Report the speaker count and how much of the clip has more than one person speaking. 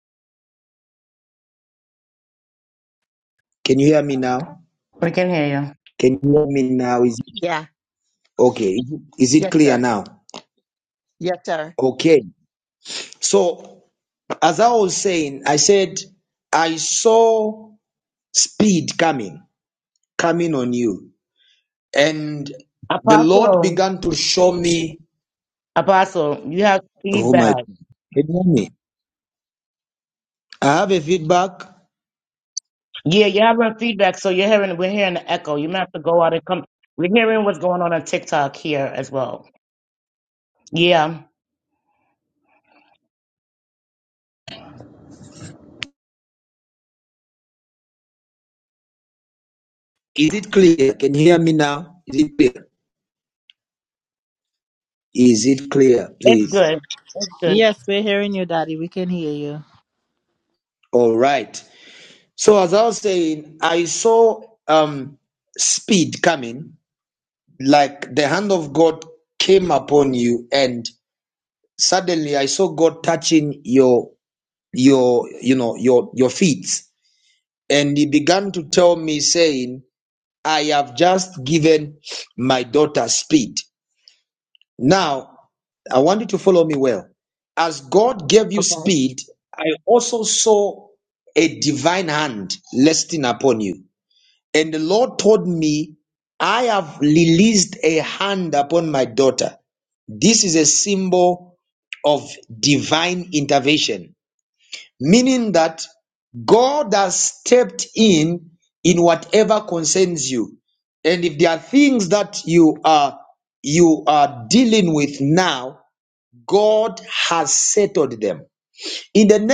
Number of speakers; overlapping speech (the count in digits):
4, about 2%